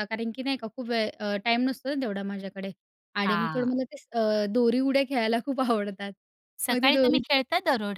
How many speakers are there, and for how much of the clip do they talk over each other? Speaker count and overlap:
2, about 15%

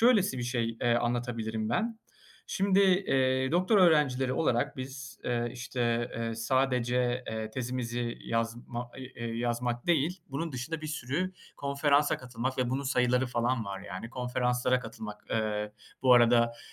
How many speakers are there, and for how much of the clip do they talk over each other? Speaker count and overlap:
1, no overlap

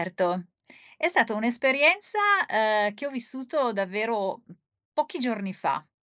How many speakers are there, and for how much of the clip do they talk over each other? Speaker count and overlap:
1, no overlap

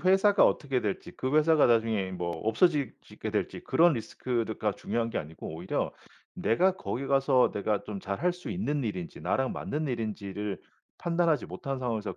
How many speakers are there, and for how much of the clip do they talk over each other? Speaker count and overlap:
1, no overlap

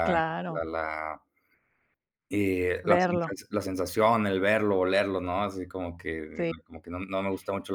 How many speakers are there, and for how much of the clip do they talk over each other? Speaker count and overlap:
2, about 9%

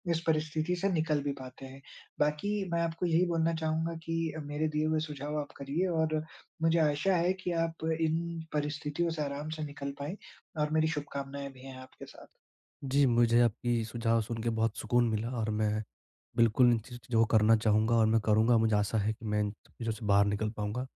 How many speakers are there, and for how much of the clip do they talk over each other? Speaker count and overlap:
2, no overlap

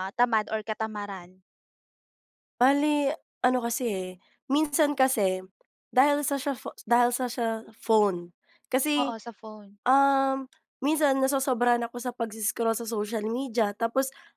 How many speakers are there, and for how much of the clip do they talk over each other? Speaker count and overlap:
2, about 1%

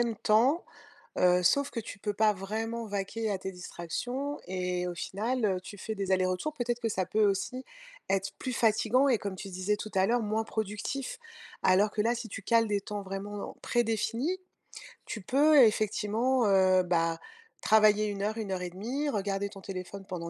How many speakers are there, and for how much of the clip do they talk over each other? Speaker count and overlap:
1, no overlap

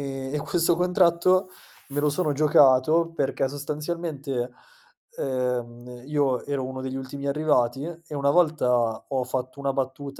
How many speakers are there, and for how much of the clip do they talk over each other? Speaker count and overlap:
1, no overlap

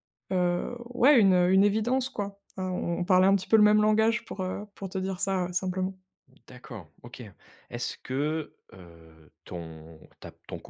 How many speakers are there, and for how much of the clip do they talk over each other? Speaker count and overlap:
2, no overlap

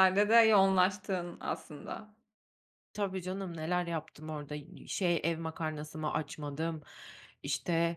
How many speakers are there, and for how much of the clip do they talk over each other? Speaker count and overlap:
2, no overlap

